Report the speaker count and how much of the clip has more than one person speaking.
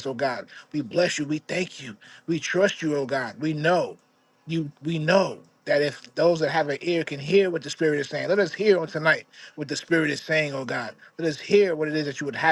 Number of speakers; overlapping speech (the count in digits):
1, no overlap